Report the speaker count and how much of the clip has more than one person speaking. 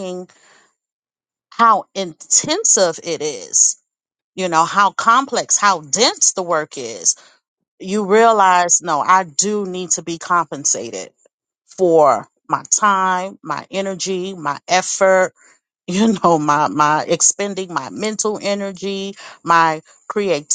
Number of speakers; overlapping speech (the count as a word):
one, no overlap